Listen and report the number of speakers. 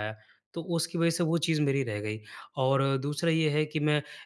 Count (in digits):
1